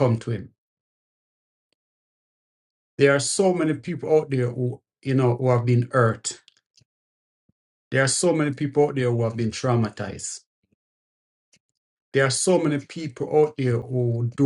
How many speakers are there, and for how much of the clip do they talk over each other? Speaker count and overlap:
1, no overlap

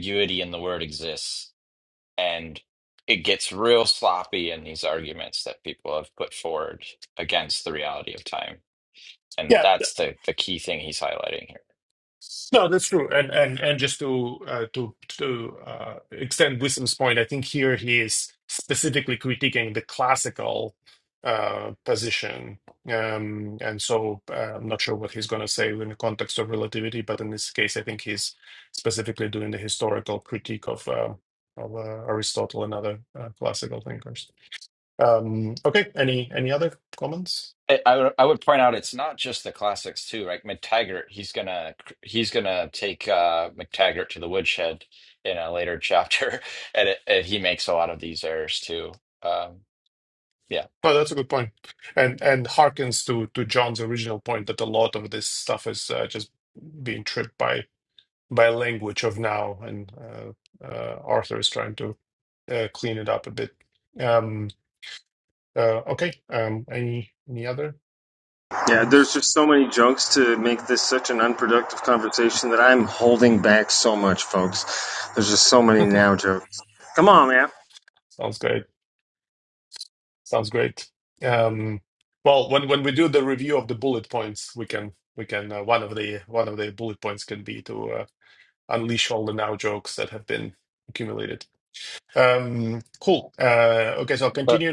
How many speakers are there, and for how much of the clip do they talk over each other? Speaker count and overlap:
3, about 1%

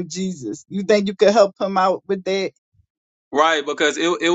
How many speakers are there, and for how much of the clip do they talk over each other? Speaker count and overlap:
2, no overlap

